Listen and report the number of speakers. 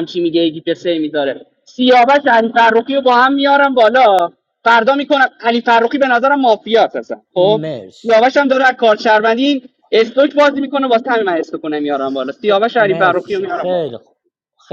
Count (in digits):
2